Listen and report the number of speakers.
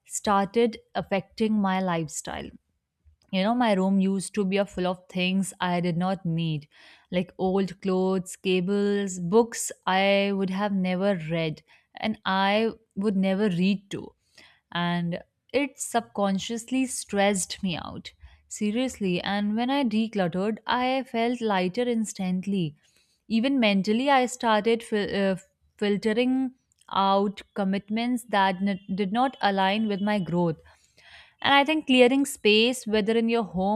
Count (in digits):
1